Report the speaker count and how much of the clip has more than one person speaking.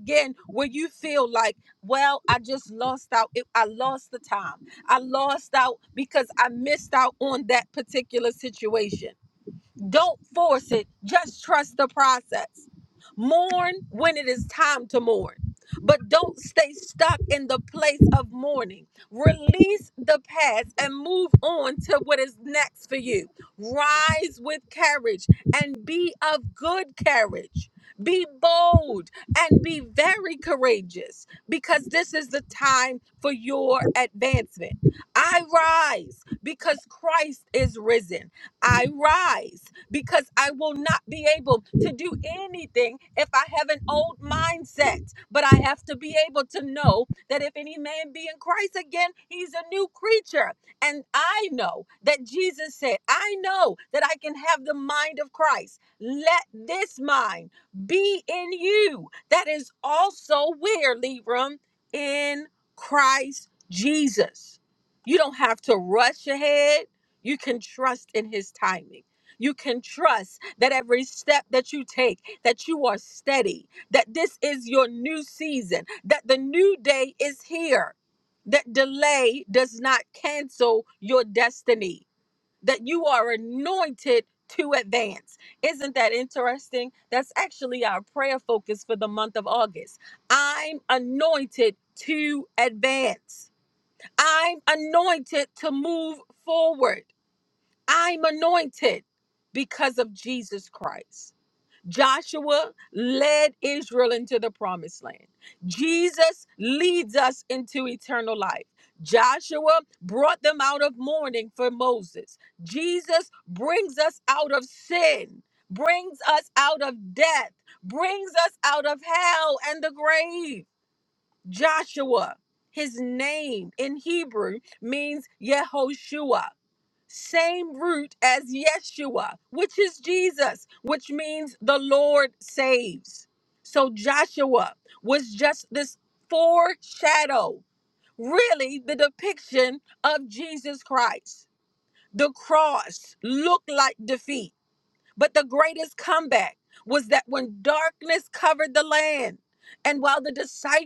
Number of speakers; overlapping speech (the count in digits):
1, no overlap